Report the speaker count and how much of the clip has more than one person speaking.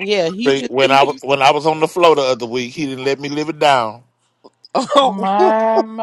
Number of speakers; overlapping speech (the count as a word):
three, about 13%